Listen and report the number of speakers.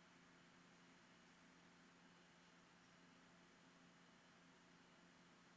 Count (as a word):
zero